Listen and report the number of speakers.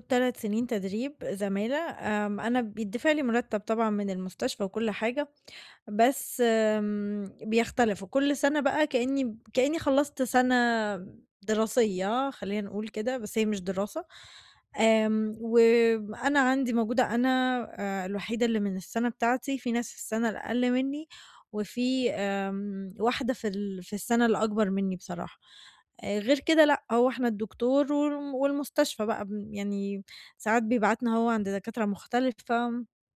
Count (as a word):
one